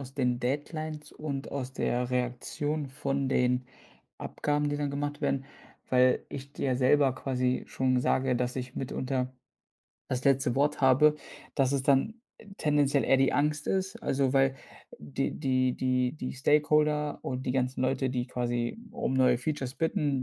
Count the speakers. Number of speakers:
1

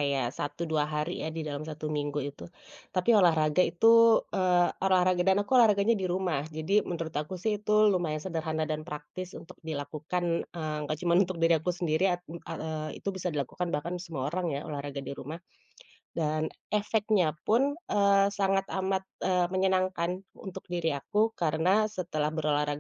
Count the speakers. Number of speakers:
1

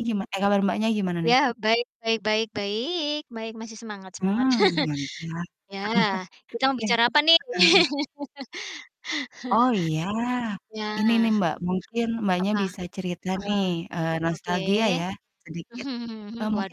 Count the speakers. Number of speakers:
2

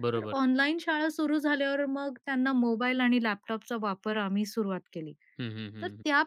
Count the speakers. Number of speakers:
2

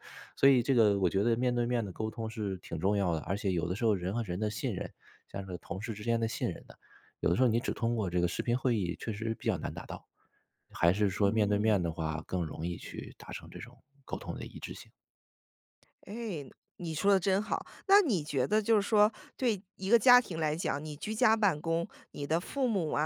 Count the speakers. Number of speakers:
2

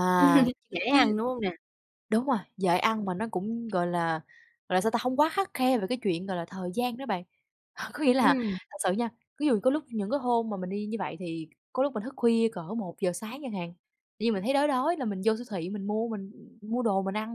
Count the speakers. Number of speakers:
2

